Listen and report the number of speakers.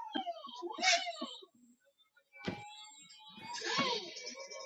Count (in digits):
0